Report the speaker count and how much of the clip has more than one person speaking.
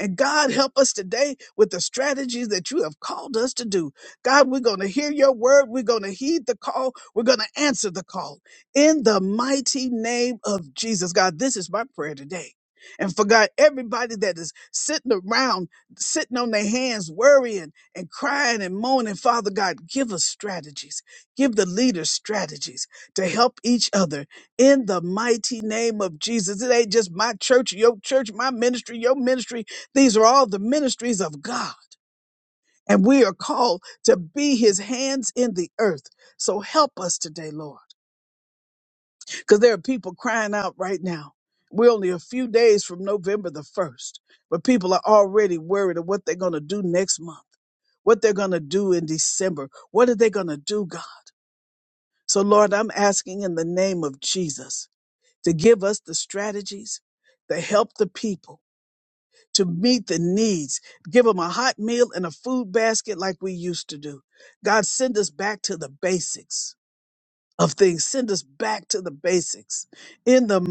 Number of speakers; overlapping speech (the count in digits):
1, no overlap